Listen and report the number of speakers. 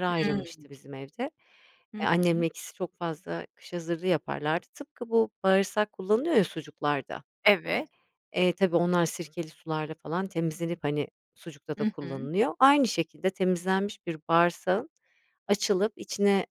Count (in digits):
2